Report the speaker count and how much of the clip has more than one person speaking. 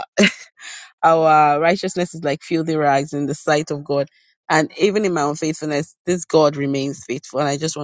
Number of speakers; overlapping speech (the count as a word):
one, no overlap